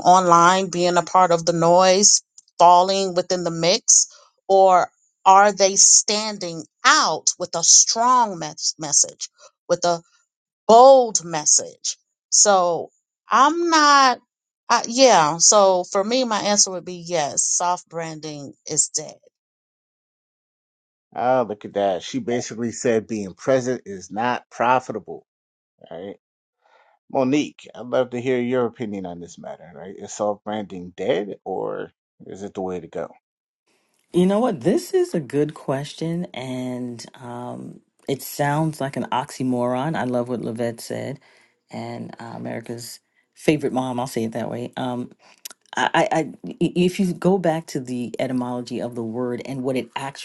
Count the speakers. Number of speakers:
3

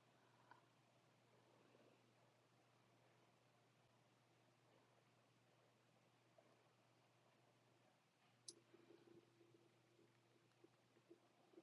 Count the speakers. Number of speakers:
0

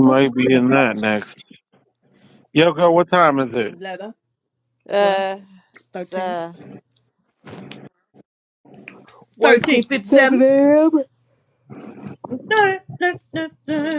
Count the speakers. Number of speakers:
3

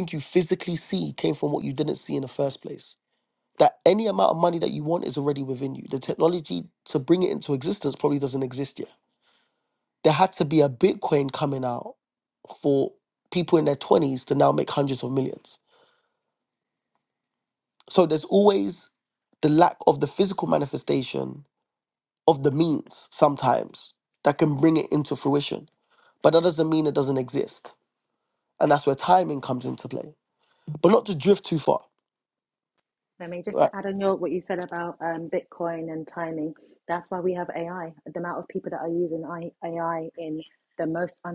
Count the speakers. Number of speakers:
2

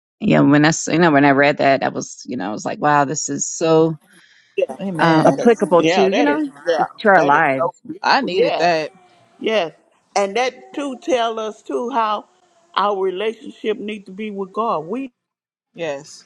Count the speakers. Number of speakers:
3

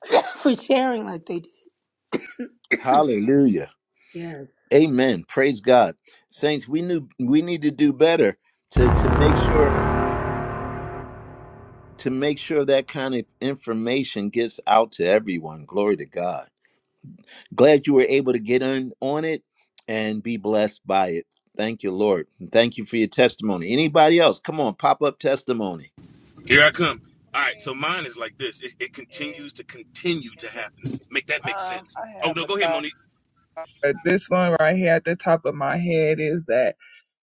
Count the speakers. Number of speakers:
4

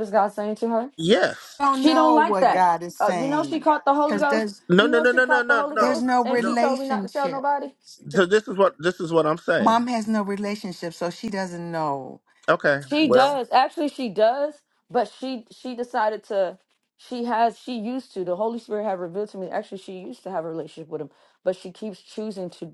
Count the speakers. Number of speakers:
3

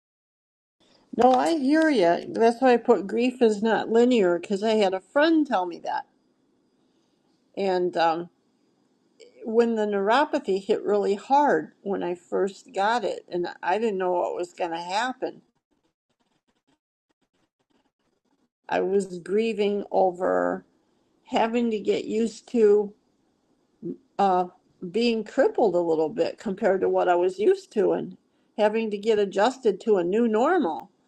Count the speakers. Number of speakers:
1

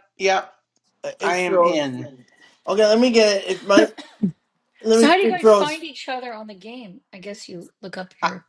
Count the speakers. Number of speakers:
3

